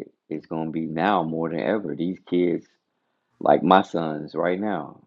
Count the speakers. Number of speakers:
1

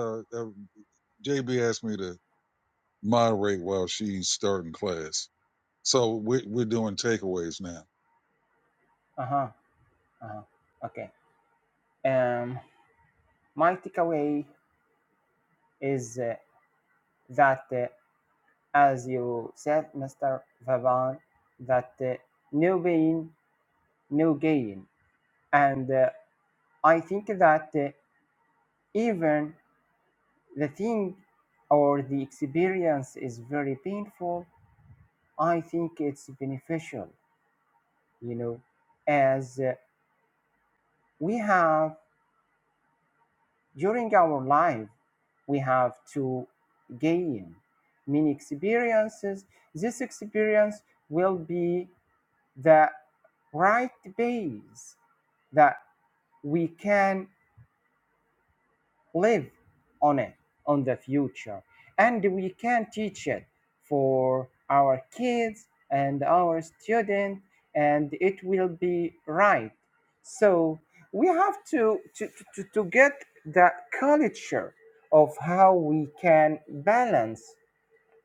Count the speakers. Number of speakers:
2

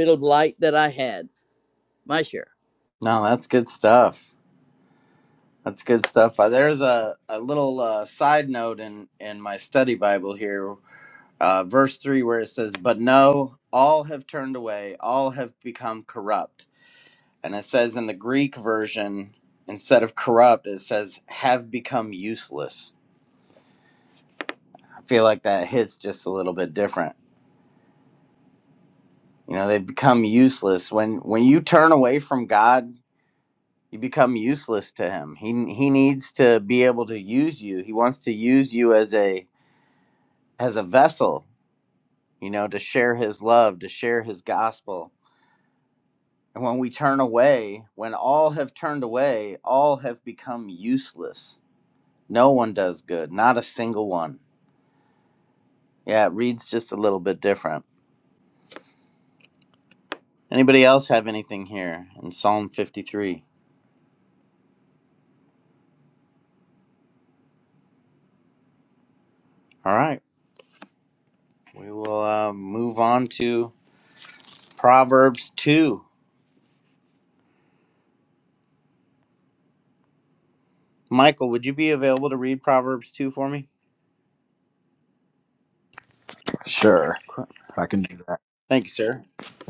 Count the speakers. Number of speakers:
3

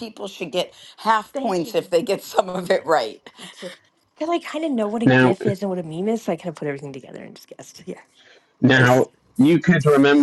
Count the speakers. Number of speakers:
3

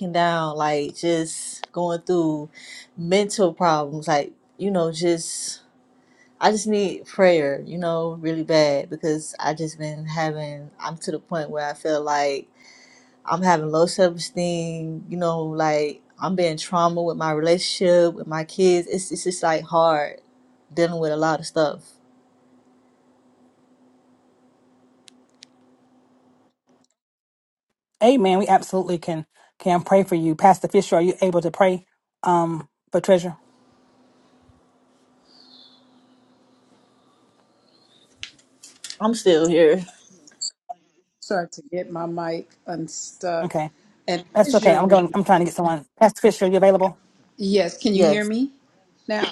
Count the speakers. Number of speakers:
3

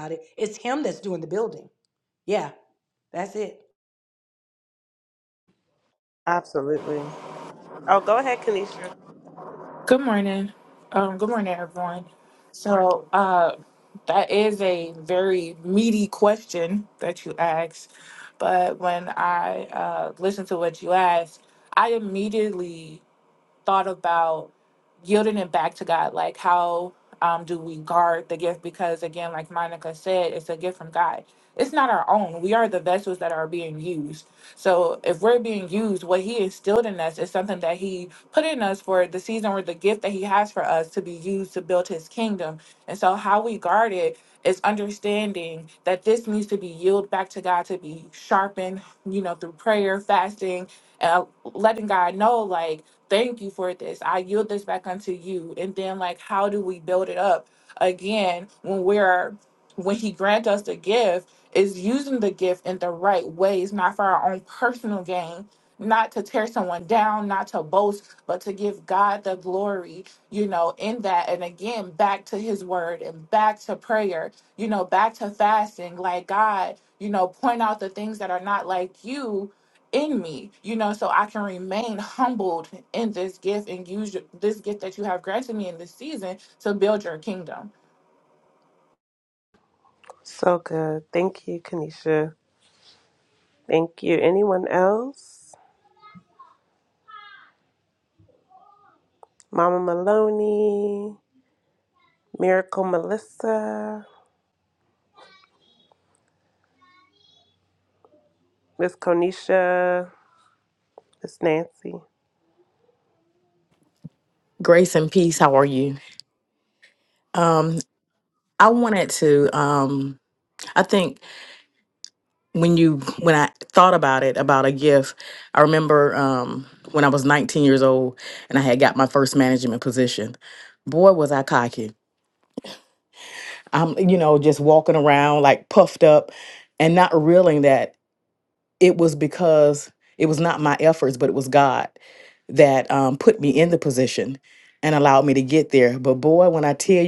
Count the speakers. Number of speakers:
4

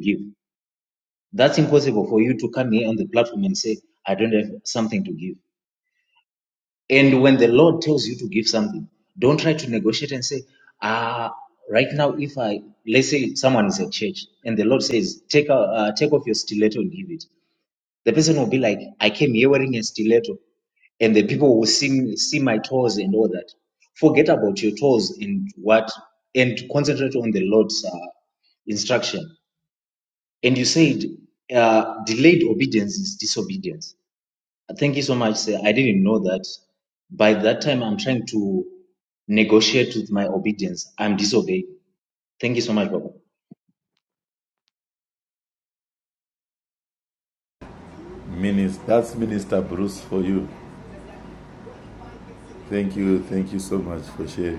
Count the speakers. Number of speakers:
2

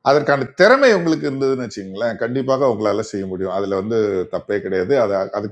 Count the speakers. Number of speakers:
1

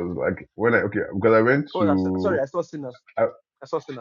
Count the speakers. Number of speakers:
2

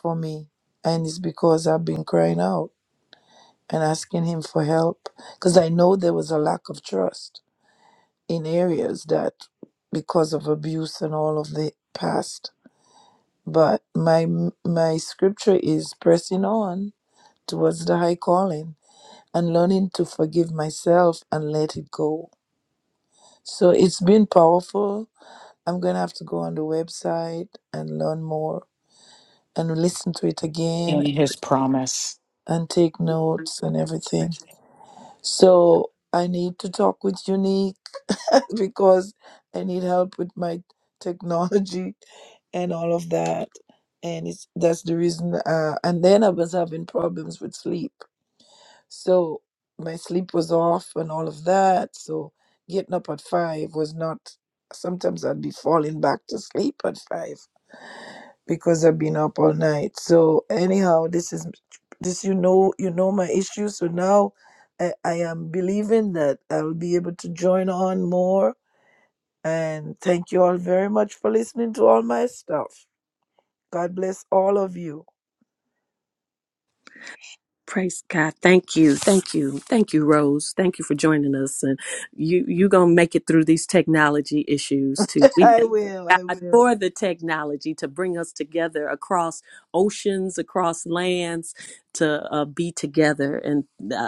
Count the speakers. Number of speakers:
3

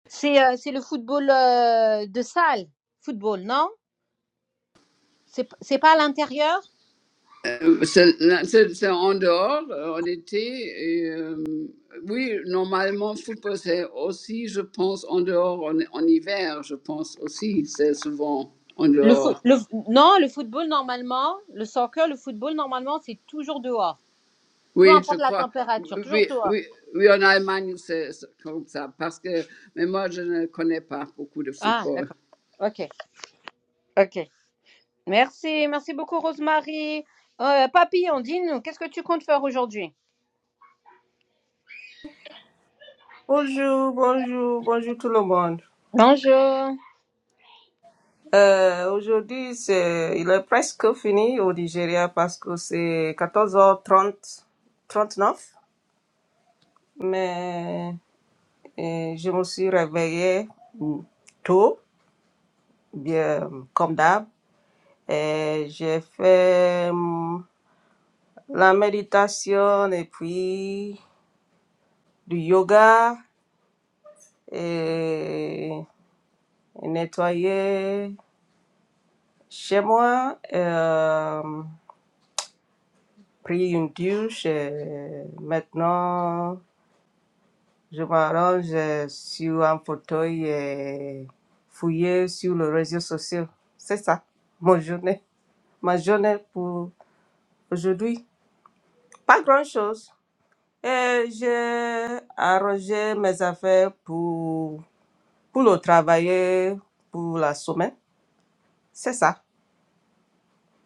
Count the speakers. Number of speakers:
3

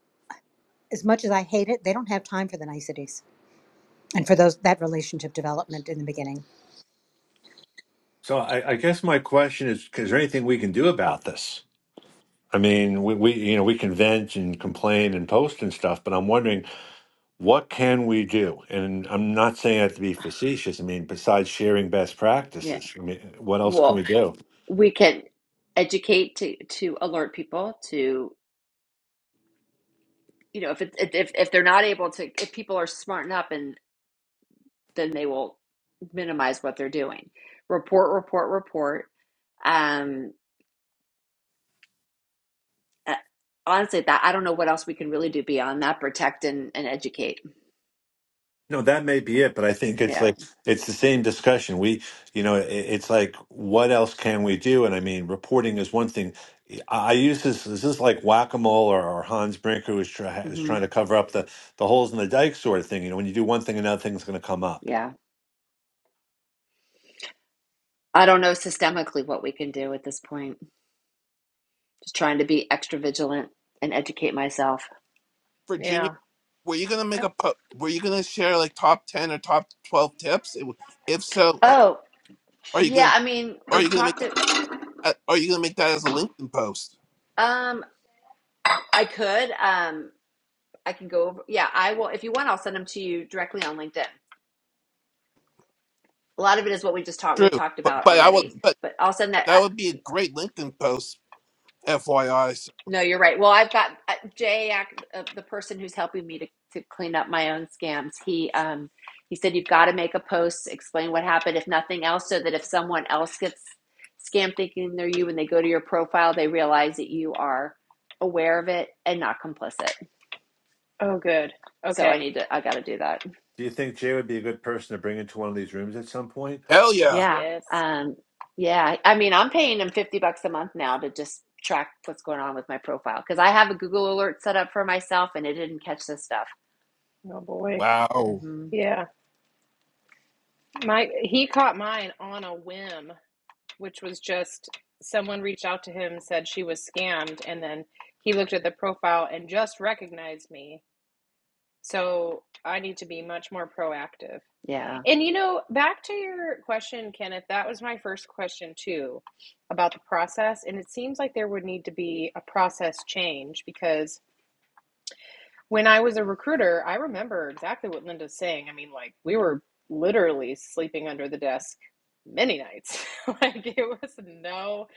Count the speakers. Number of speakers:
5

